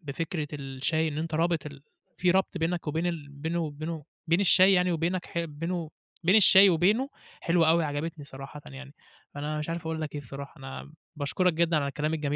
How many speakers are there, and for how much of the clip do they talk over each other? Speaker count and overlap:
1, no overlap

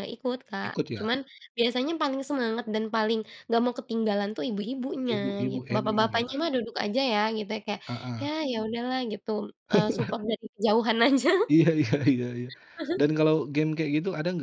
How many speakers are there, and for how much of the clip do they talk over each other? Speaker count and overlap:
2, about 13%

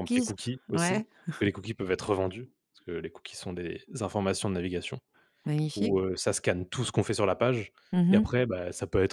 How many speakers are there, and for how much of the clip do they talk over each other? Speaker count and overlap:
2, about 11%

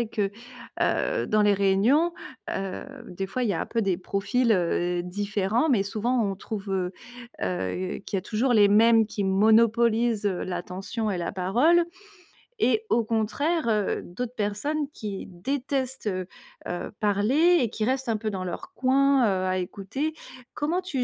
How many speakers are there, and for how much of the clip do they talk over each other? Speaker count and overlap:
1, no overlap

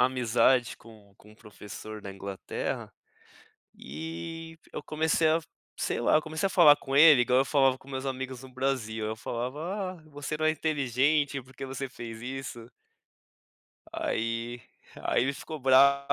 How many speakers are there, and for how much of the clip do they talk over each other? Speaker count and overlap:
1, no overlap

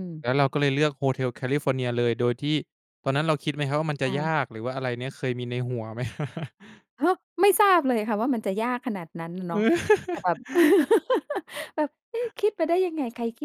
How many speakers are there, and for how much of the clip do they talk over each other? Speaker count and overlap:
2, about 2%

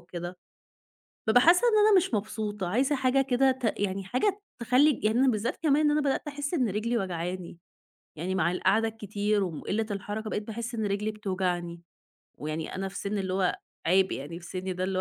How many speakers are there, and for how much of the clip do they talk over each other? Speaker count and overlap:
1, no overlap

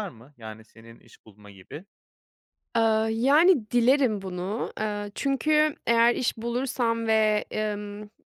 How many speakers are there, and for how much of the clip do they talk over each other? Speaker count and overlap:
2, no overlap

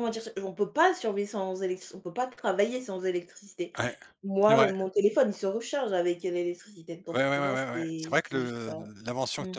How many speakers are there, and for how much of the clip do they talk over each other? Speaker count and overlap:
2, about 23%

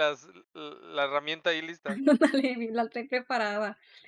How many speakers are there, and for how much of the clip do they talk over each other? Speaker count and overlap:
2, about 2%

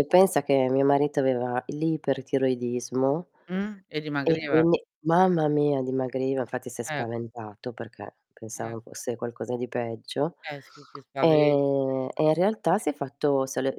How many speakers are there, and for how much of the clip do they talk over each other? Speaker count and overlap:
2, about 8%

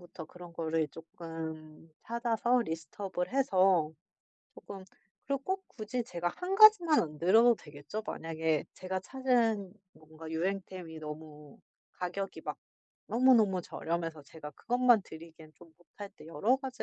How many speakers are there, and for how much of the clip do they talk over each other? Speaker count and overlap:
1, no overlap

